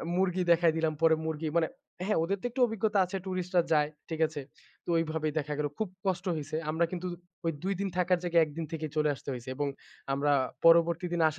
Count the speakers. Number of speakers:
1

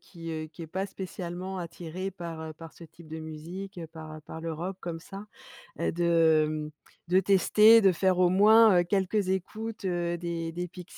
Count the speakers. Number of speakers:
1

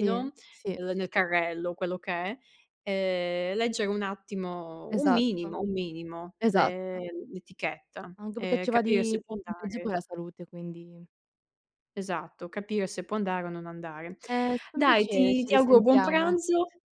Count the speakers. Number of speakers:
2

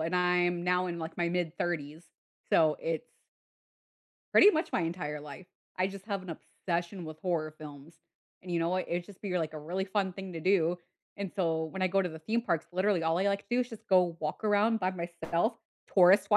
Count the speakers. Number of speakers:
1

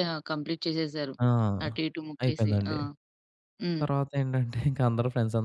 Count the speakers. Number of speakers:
2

